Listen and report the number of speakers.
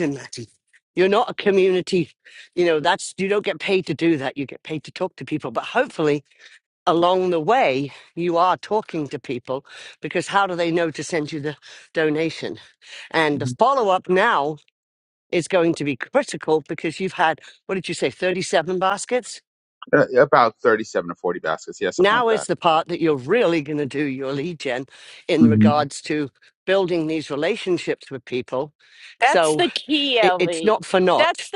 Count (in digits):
3